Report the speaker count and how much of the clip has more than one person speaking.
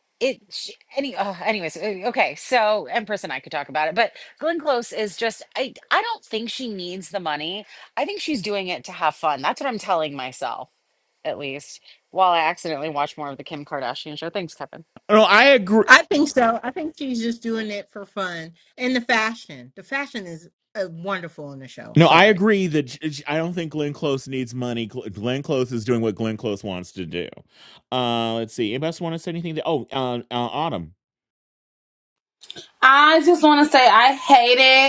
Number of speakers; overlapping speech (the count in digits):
4, about 1%